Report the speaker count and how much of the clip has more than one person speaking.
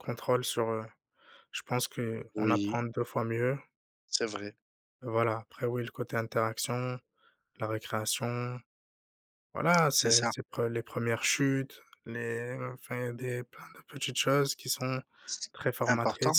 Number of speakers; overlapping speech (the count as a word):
two, about 8%